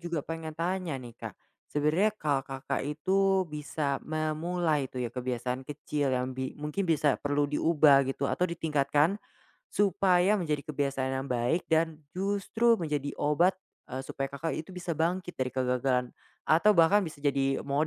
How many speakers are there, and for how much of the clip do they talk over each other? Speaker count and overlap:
1, no overlap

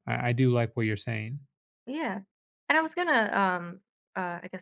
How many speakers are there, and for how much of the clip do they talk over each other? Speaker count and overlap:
2, no overlap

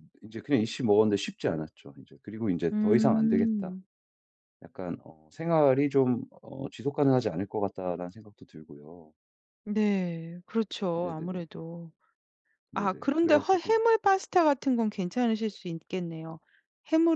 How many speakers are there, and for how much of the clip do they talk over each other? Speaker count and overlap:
2, about 14%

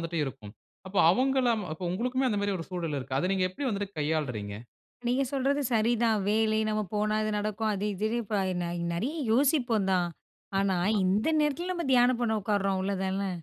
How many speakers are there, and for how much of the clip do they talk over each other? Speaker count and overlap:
2, about 1%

